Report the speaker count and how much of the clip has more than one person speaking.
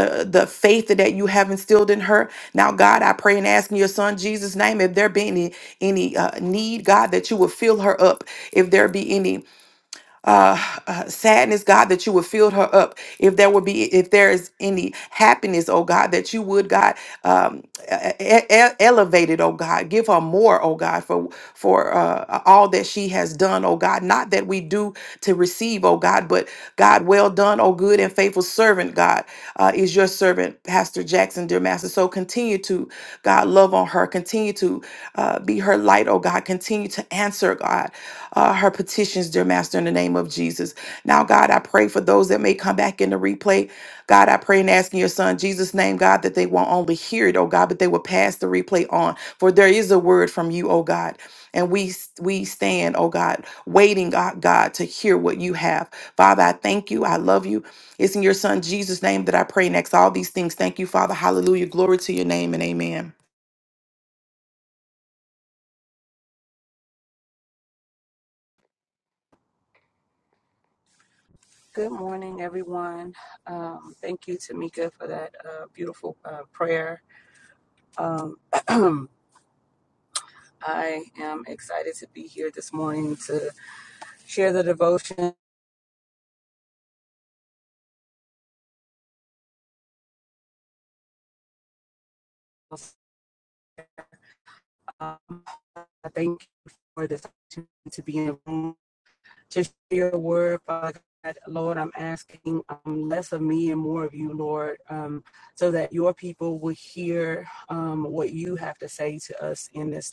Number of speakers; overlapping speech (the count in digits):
2, no overlap